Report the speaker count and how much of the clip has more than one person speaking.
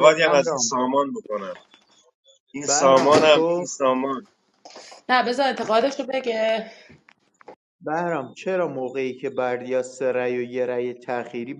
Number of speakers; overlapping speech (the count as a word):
three, about 15%